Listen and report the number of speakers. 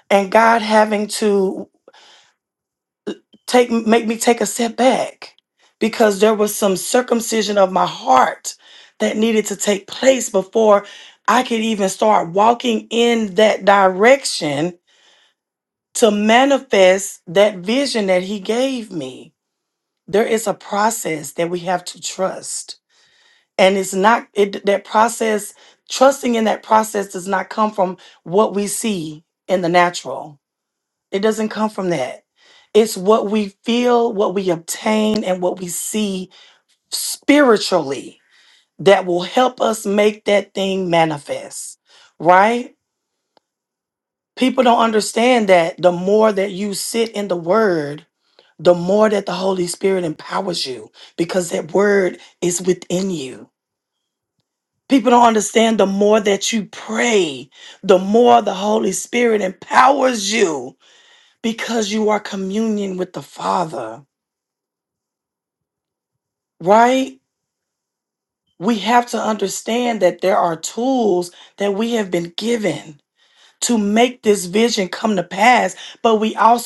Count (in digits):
1